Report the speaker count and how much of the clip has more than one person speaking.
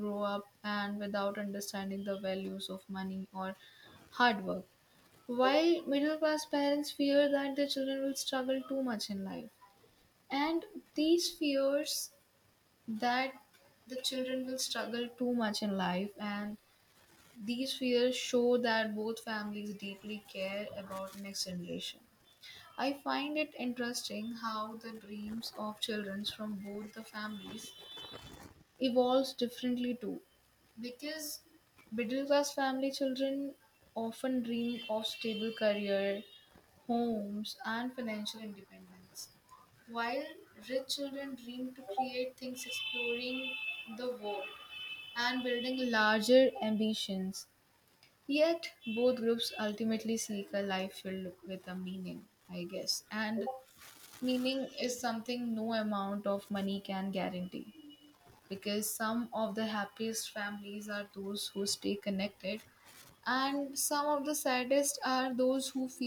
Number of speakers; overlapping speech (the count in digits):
1, no overlap